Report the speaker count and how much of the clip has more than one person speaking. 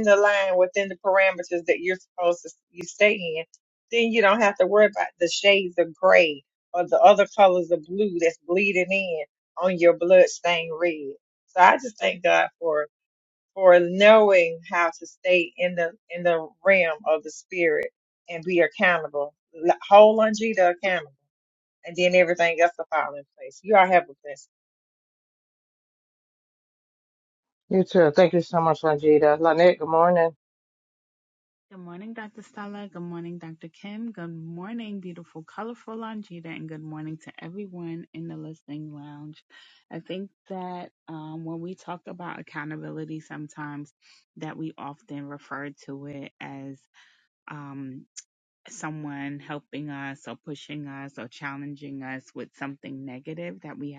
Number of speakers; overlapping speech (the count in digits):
3, no overlap